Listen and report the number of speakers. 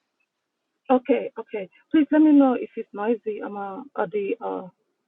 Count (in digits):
1